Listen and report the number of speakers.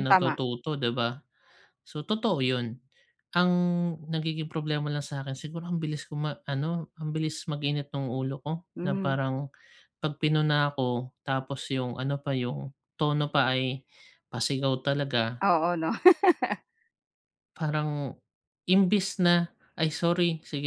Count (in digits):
2